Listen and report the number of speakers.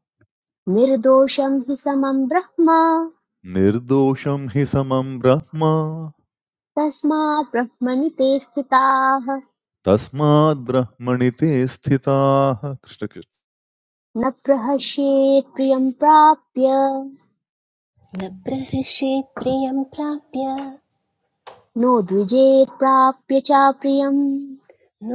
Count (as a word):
three